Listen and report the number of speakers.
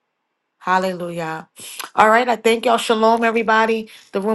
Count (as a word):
one